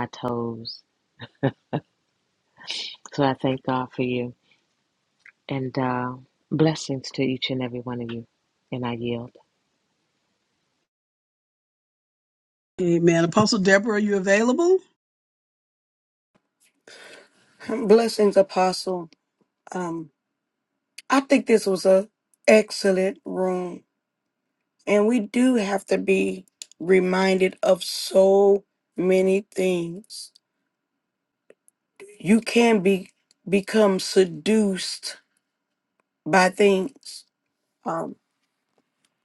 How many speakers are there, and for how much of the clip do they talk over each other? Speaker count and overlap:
3, no overlap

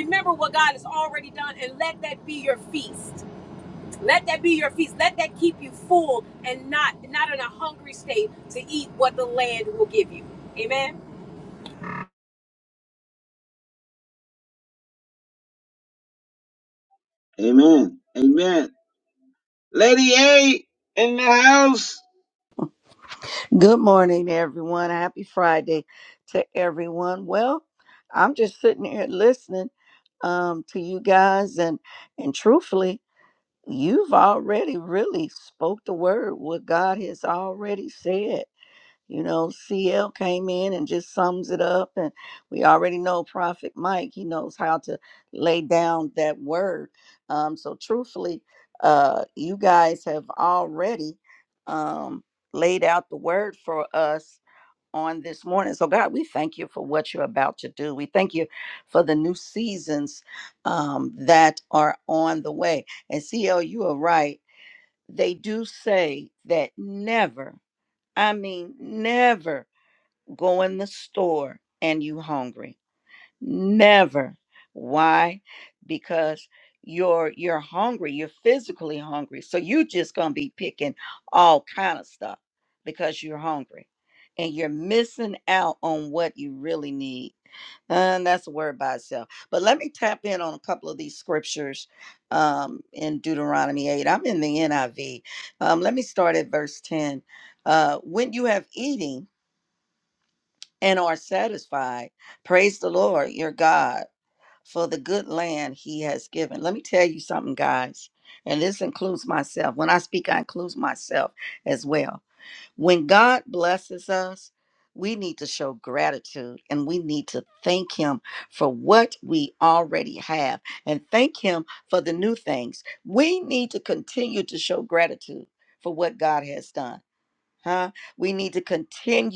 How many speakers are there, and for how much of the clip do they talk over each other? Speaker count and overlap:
3, no overlap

